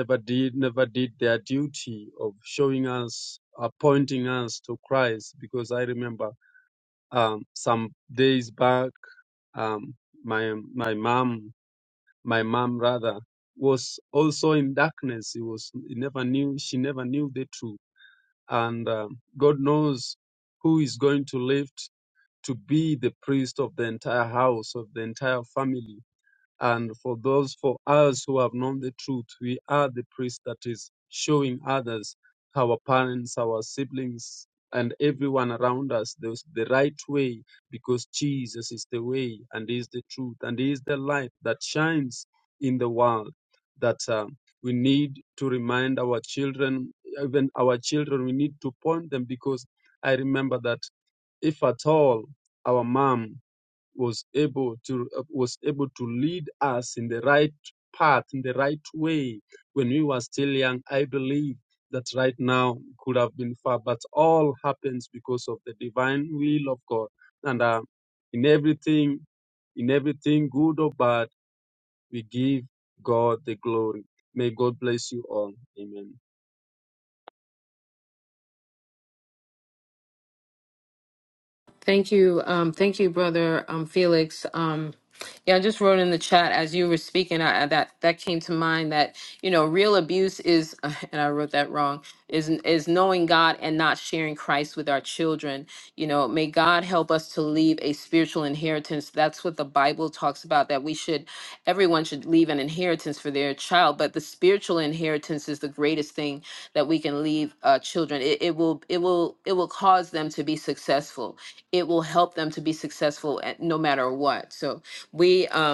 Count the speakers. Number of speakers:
2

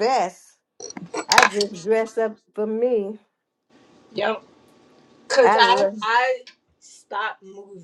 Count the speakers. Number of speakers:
2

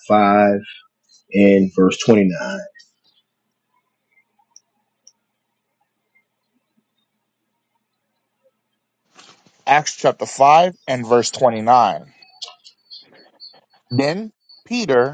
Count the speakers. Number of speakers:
2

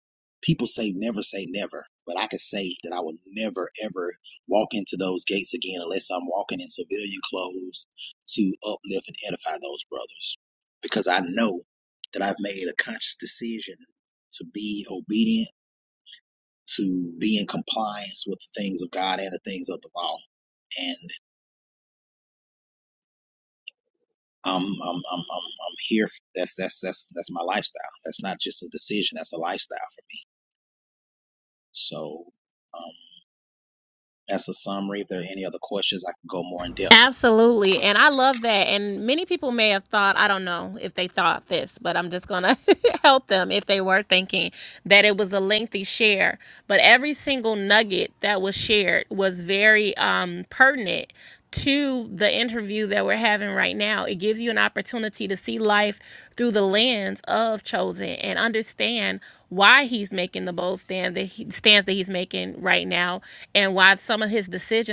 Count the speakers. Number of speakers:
2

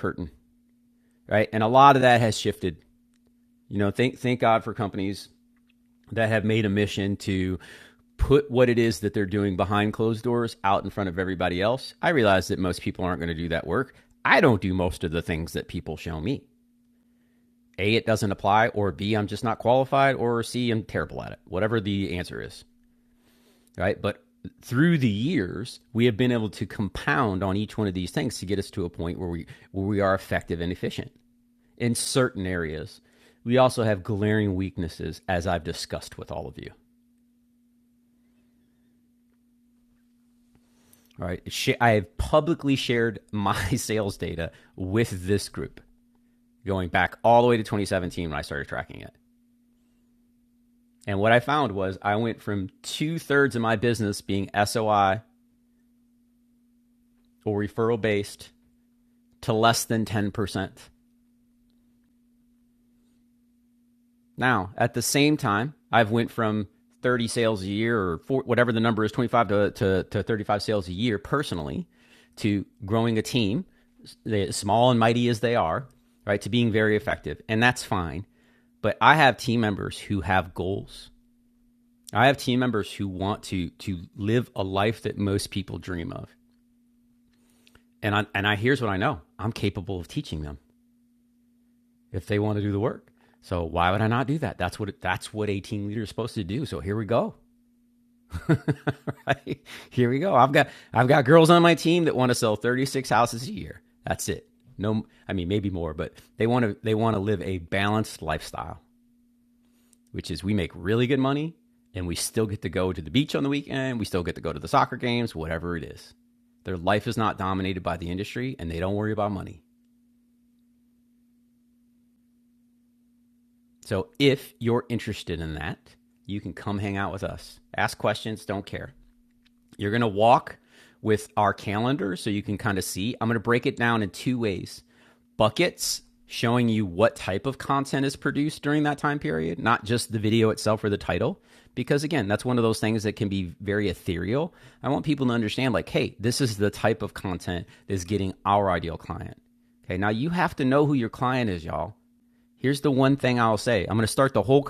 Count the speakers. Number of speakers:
1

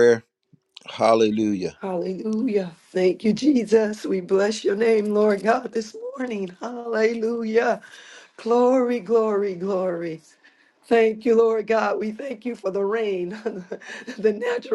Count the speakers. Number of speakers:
2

